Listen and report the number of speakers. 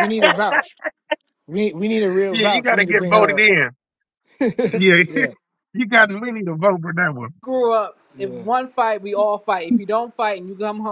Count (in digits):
3